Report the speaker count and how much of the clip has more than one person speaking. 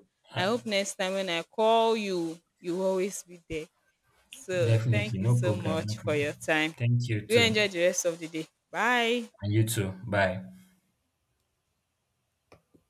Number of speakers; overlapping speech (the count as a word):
two, about 14%